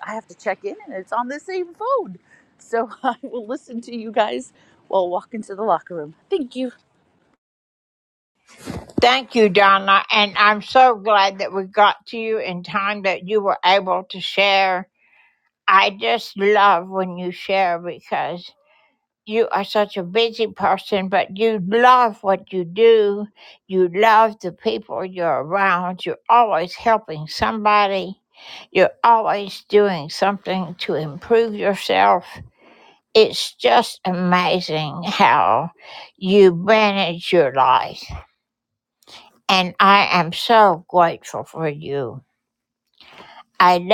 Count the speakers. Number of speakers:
2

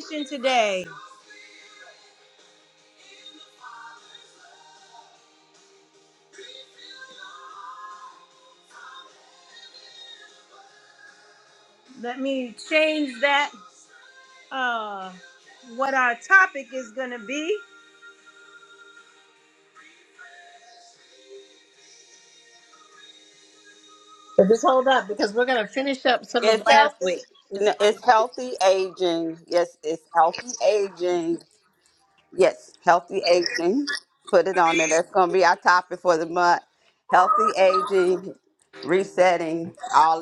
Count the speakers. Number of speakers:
3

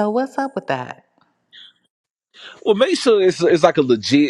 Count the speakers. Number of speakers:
2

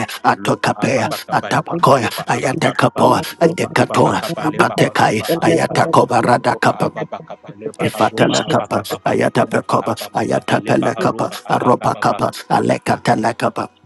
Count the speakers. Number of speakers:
2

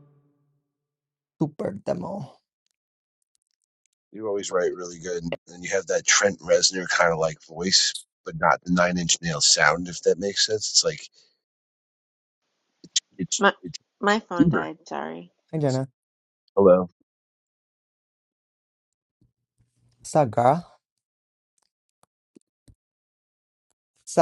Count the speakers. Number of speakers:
3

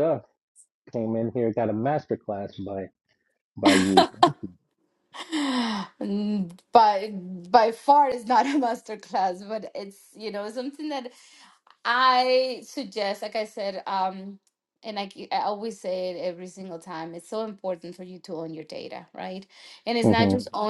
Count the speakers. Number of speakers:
2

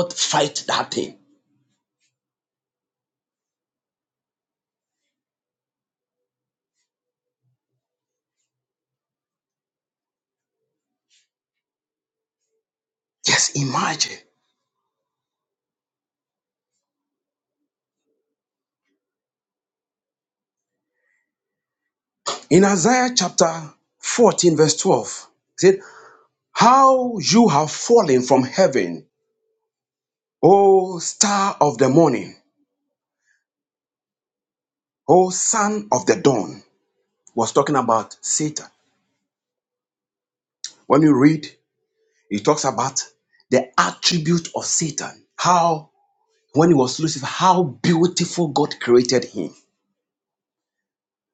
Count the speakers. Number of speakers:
1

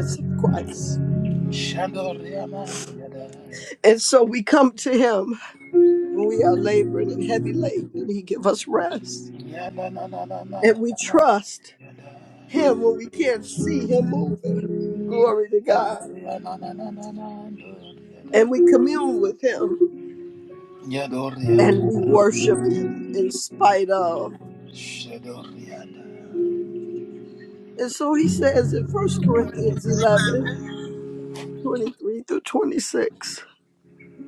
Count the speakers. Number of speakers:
2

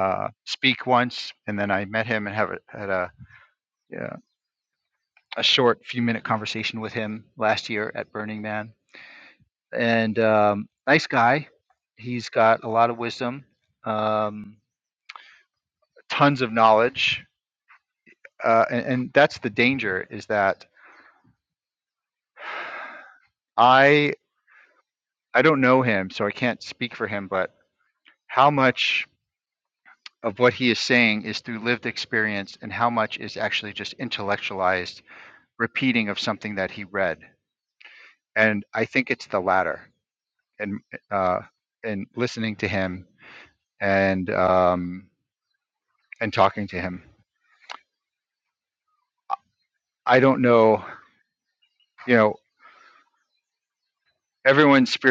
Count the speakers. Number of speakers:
1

